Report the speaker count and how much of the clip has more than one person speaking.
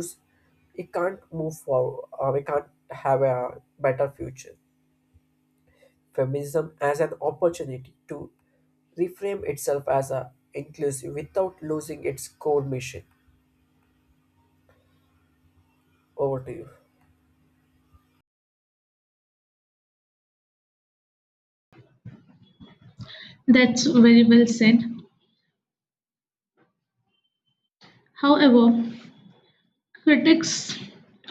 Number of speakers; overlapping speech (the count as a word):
two, no overlap